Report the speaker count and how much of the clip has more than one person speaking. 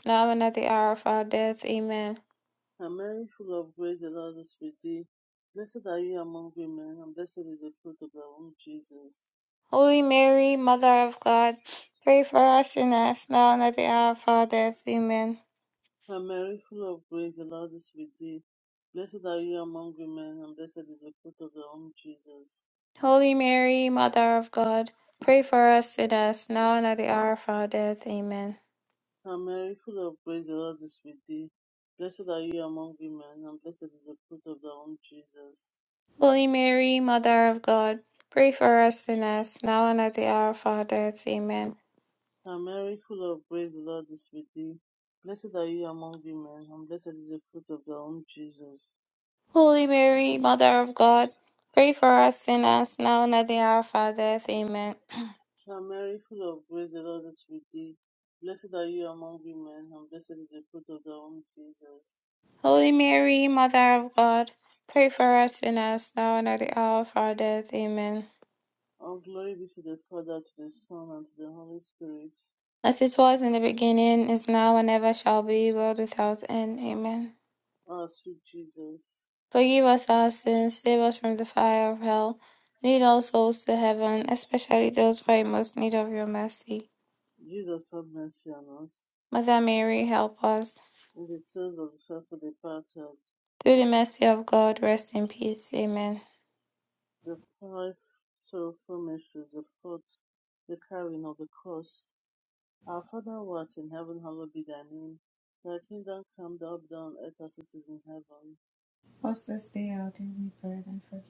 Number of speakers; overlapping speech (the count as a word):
three, no overlap